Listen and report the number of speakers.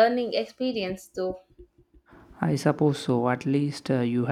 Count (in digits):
2